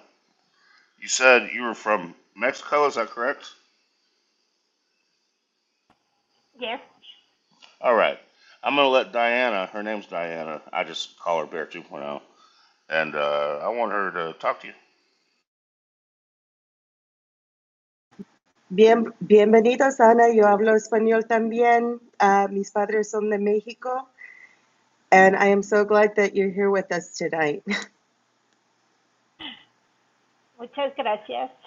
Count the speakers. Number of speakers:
3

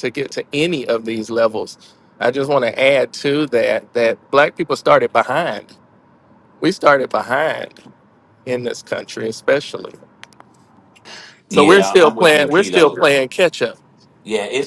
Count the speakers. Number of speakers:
2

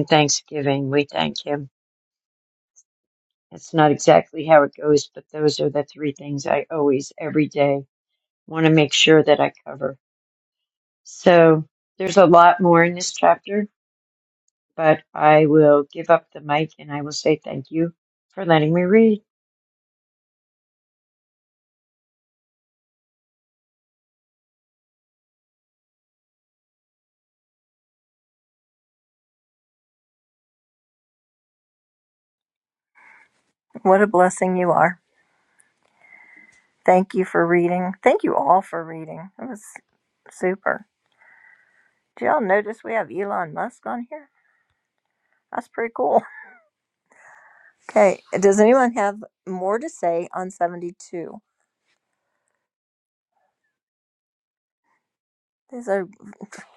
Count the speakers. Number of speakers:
2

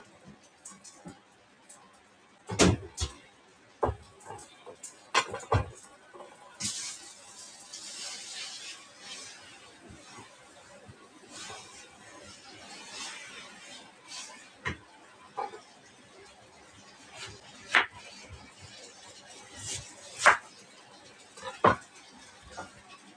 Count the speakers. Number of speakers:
0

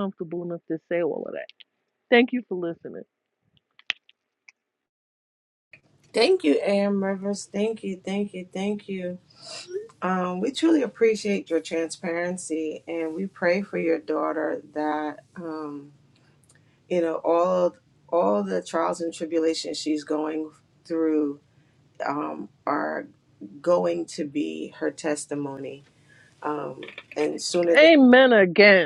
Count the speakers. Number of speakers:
2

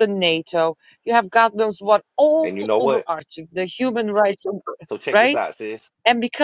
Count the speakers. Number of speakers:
2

